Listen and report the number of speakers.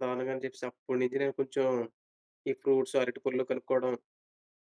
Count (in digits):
1